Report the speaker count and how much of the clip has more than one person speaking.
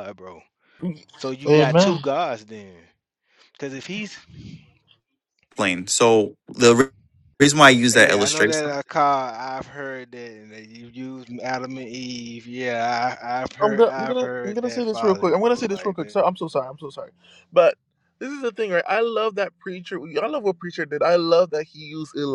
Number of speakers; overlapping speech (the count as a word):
three, about 18%